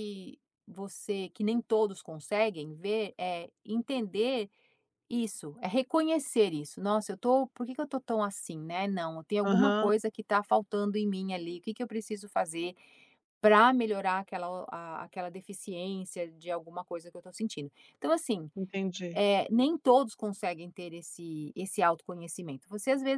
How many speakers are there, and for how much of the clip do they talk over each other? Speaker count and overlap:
2, about 2%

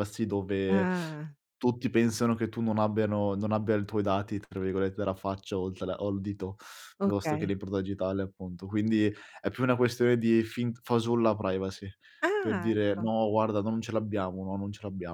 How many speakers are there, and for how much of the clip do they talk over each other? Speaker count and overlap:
2, about 9%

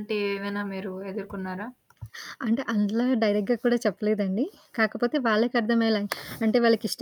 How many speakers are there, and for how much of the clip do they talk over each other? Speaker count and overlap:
2, no overlap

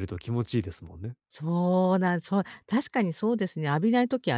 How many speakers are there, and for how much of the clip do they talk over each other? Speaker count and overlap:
2, no overlap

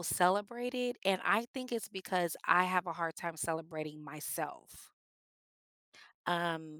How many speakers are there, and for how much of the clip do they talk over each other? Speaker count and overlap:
1, no overlap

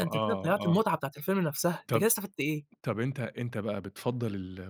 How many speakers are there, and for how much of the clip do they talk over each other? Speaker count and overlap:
2, about 22%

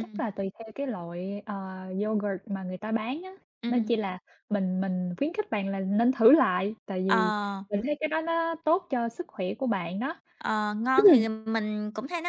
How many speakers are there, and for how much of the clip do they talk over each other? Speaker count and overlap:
2, about 6%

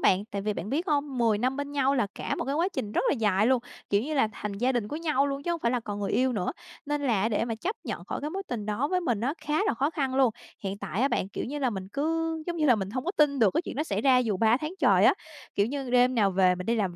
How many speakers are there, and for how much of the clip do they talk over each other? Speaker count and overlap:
1, no overlap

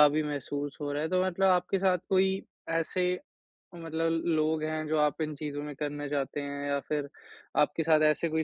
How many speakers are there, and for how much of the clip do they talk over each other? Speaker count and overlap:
1, no overlap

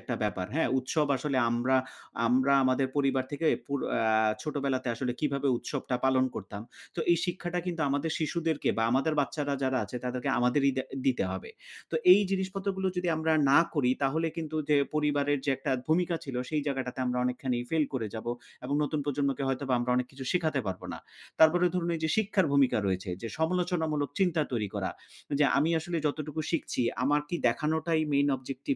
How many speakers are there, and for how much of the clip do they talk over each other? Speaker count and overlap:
1, no overlap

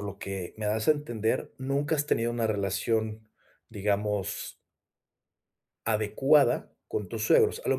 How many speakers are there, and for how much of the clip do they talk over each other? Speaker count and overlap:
1, no overlap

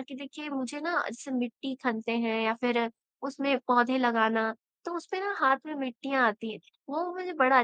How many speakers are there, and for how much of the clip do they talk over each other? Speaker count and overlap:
1, no overlap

